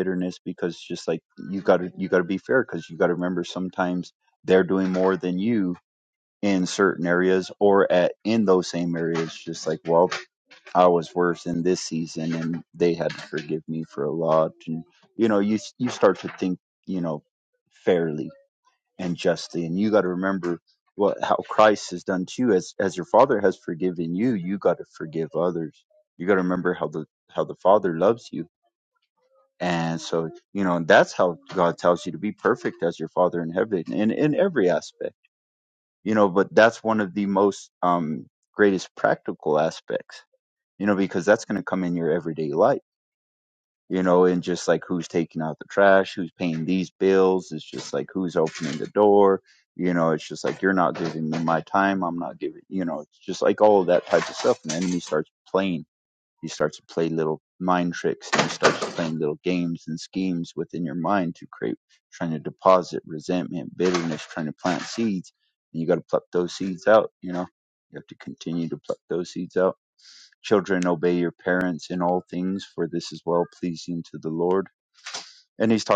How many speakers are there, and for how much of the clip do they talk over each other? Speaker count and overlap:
1, no overlap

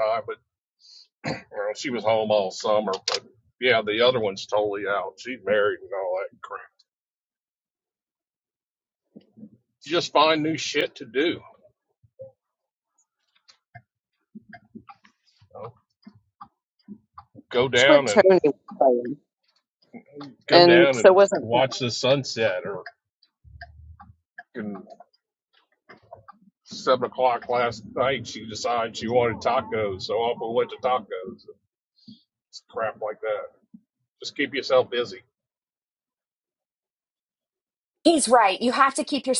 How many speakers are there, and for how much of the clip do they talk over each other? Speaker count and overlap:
3, about 4%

